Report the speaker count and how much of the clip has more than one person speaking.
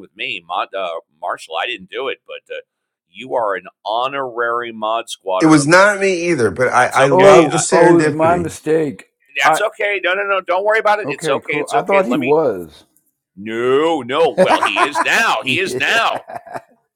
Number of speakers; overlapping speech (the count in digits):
3, about 23%